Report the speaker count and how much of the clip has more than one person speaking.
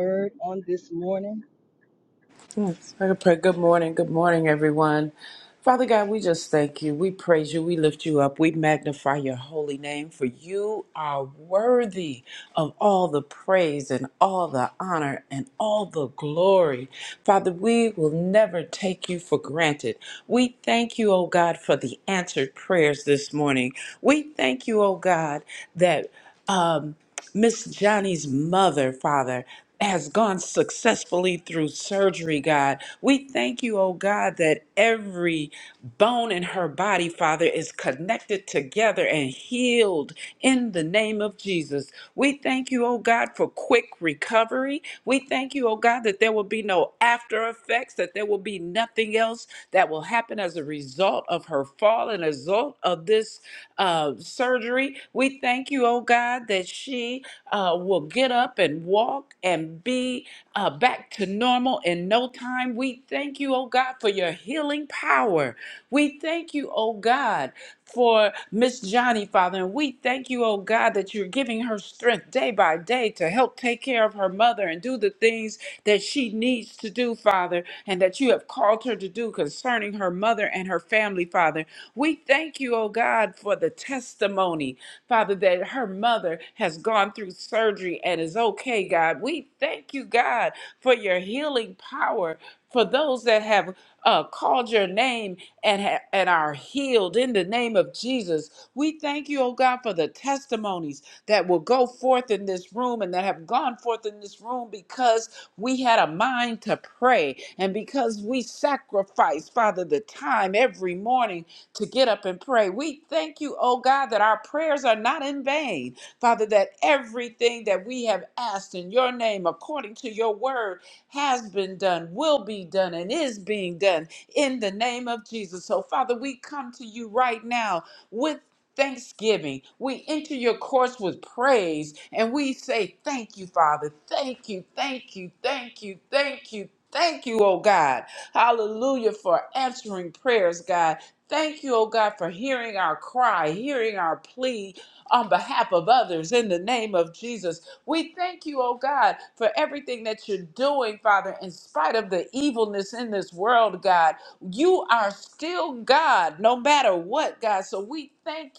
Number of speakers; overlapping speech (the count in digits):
2, no overlap